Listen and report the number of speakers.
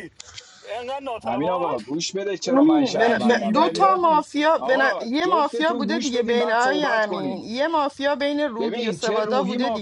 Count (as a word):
three